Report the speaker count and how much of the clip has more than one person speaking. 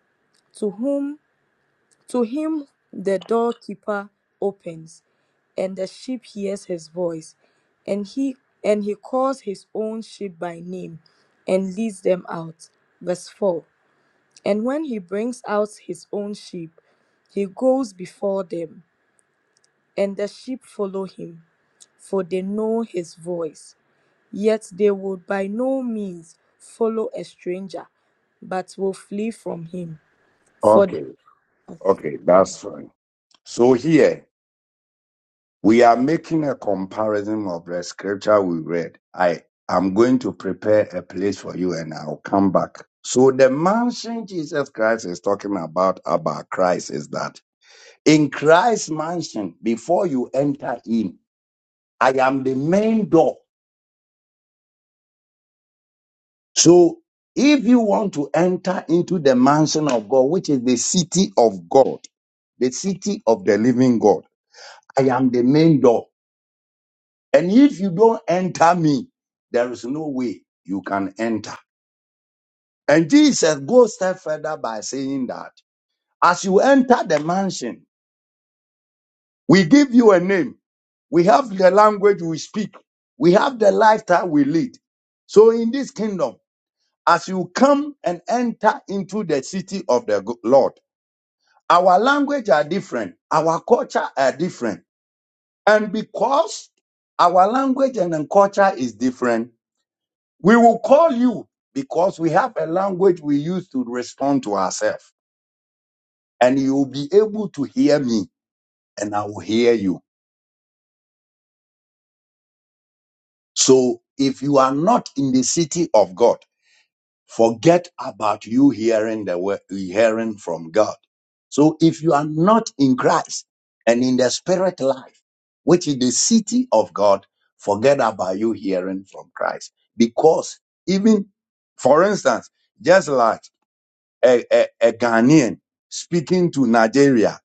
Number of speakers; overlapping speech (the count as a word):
two, under 1%